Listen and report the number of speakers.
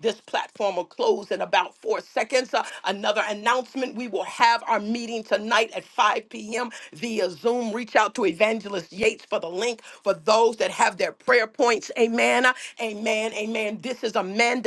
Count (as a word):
one